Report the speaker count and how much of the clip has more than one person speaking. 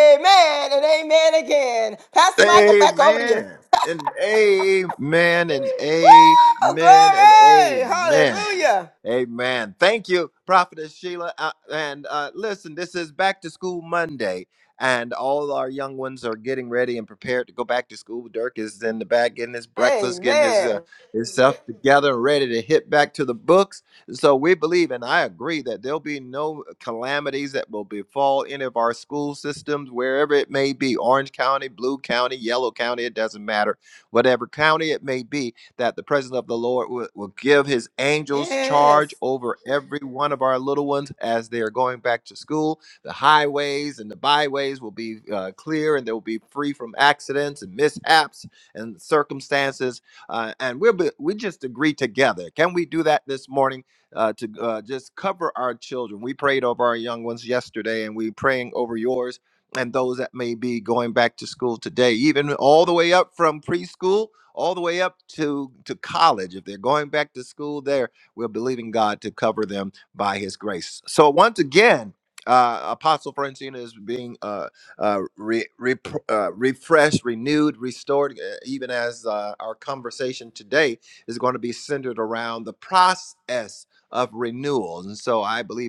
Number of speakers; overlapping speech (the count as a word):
two, about 5%